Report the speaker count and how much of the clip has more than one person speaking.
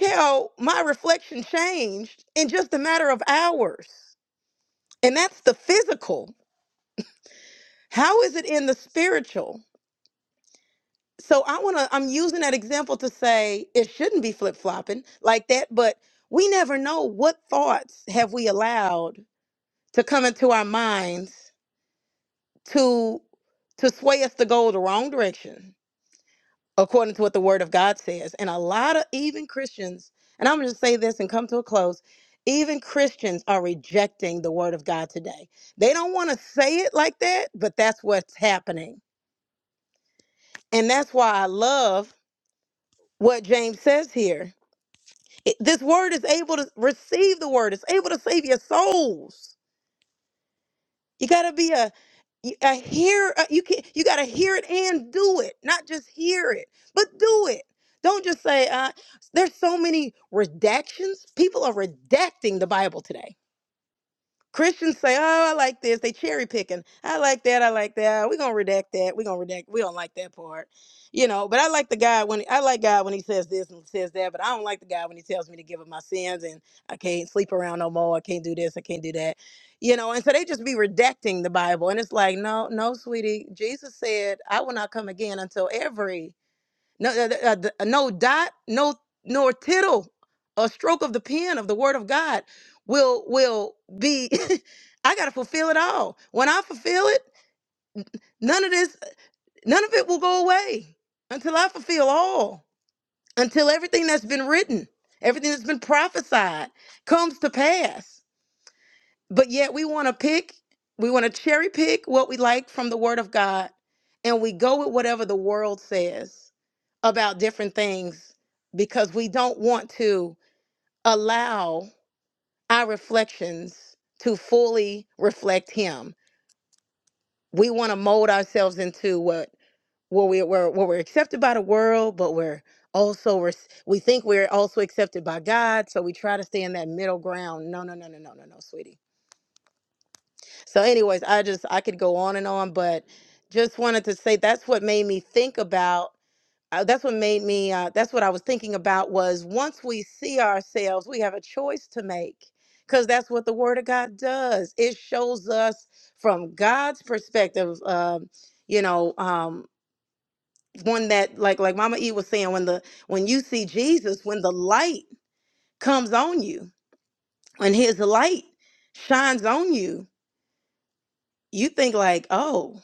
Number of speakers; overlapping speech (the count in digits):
1, no overlap